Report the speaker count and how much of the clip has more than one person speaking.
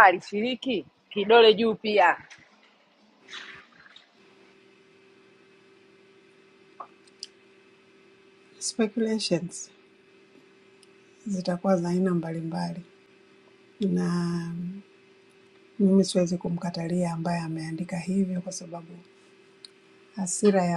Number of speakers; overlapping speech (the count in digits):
2, no overlap